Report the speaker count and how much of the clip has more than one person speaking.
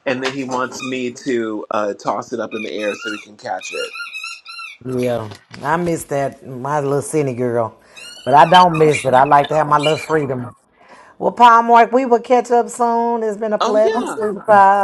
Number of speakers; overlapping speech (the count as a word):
two, about 4%